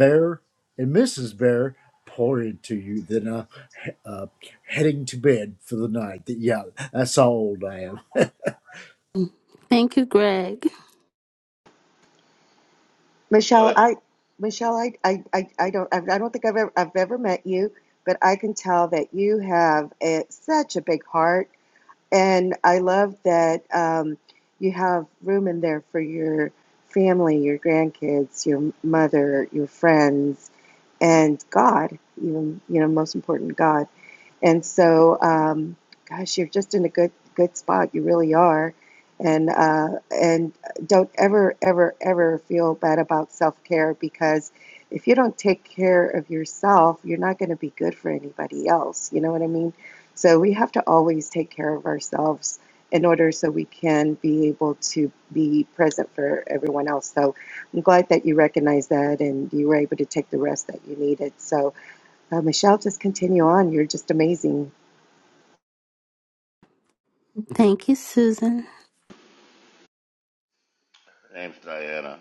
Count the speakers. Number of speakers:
four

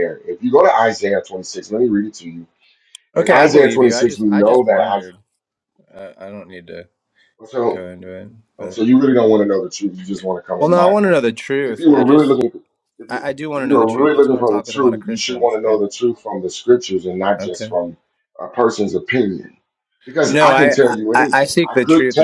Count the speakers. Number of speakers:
two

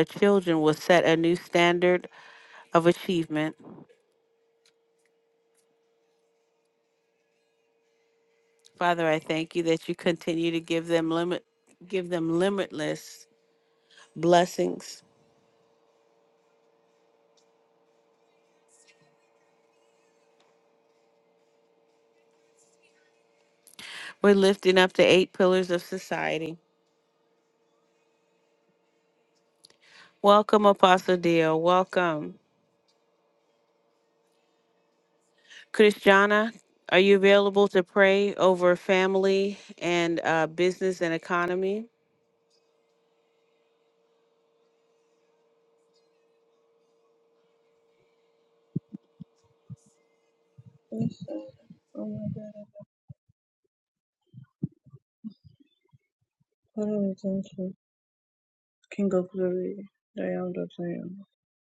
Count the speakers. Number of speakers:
two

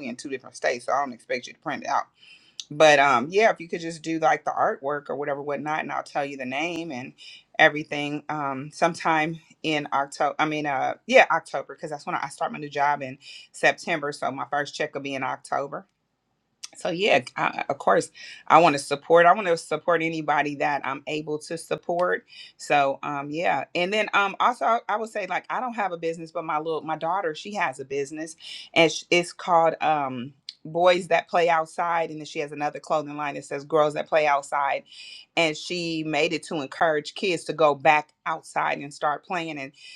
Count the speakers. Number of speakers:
one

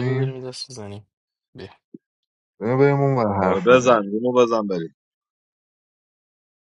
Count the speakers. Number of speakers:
three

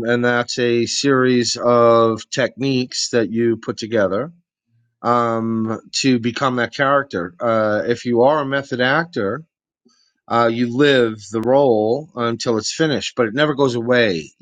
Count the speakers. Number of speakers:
one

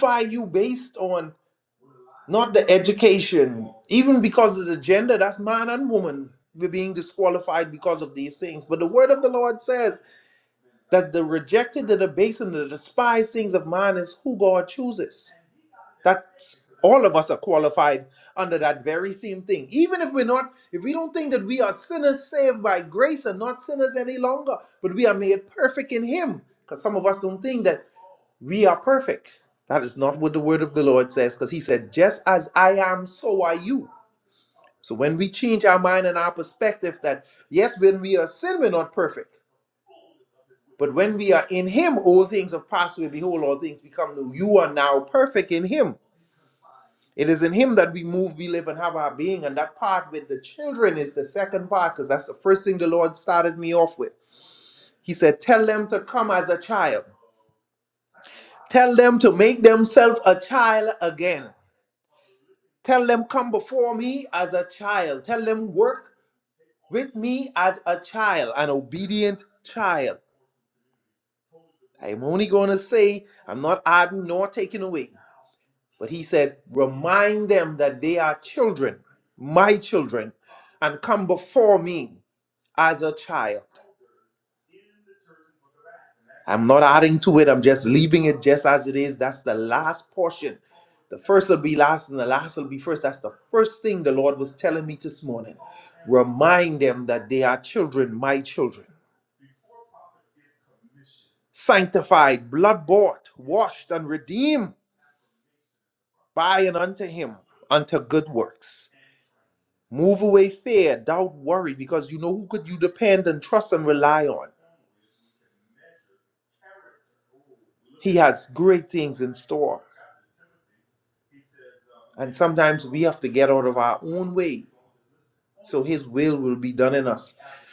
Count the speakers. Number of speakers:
one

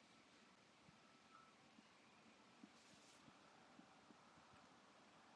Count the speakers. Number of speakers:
zero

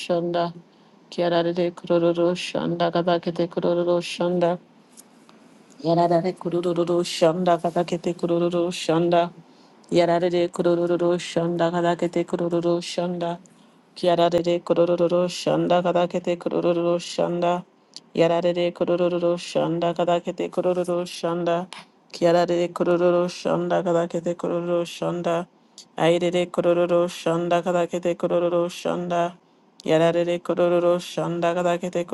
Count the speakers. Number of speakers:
one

